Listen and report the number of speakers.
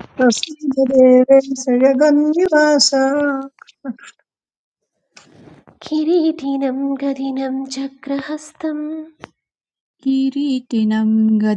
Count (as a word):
three